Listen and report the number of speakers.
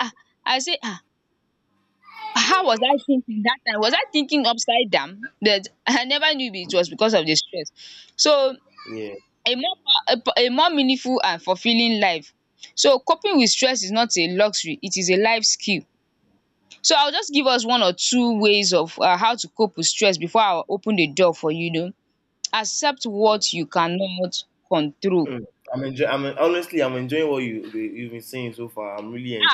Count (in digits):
2